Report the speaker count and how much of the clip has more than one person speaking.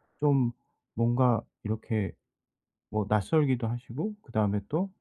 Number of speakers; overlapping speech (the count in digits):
1, no overlap